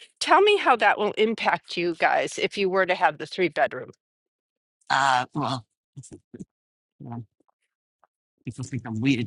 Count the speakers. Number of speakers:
2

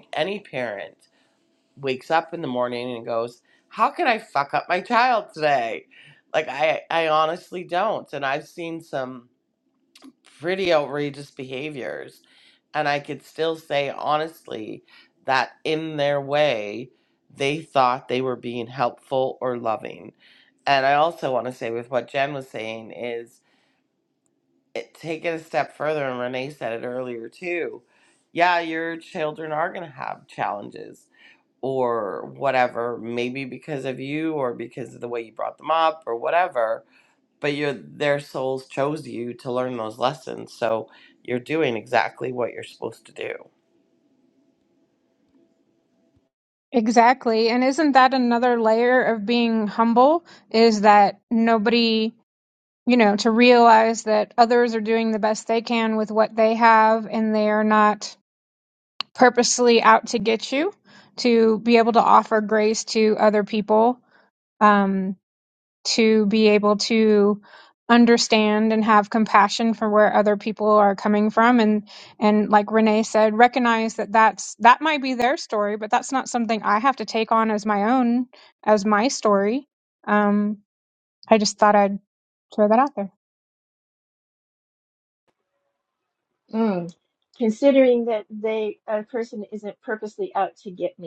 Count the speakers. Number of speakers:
3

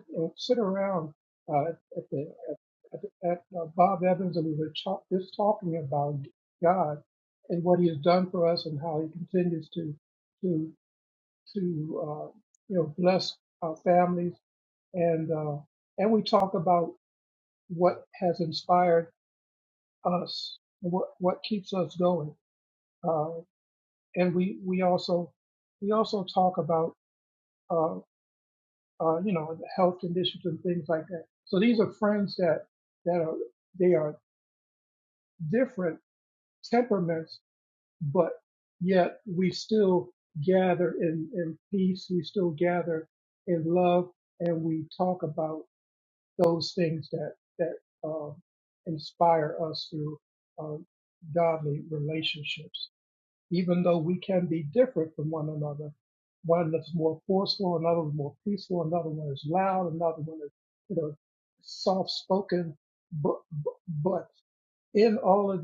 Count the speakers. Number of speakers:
1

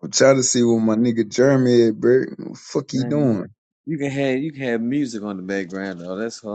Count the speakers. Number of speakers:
2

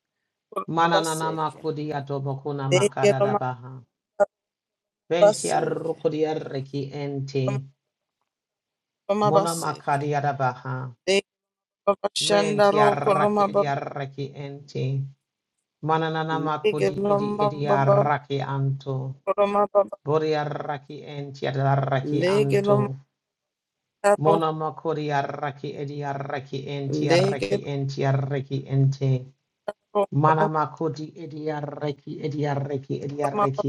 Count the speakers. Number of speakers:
2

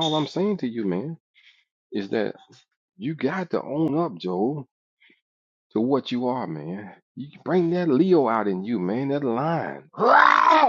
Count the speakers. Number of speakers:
1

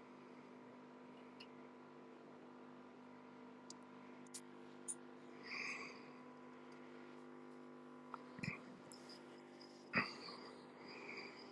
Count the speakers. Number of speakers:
0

